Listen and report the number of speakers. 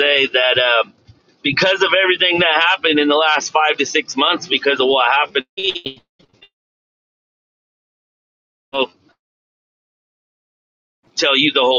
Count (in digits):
1